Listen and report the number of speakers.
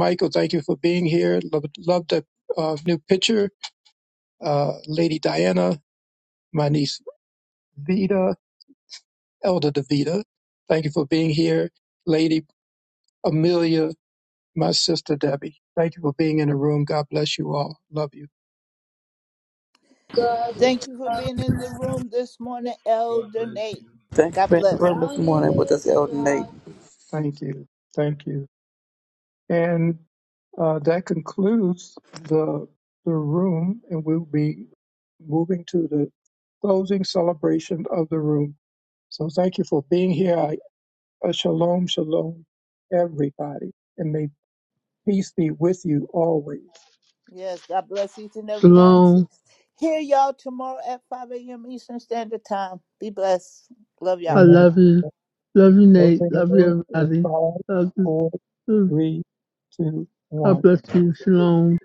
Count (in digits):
4